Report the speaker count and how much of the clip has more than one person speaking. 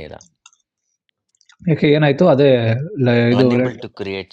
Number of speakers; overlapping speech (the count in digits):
2, about 4%